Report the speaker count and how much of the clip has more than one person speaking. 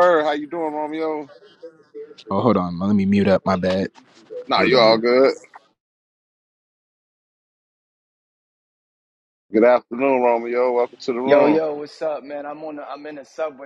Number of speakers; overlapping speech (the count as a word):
three, about 5%